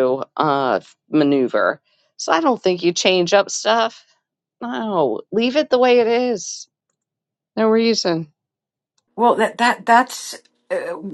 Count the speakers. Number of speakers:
2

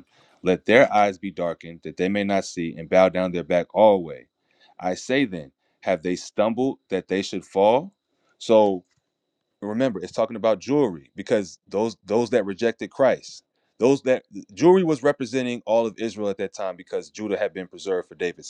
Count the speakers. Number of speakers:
1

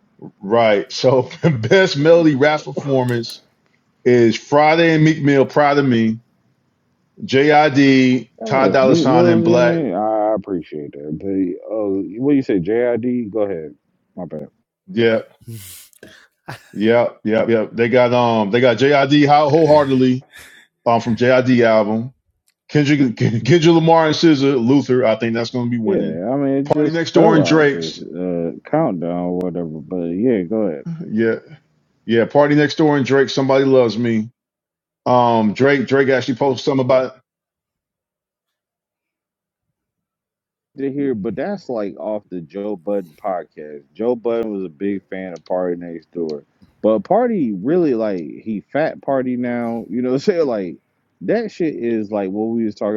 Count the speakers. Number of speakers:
2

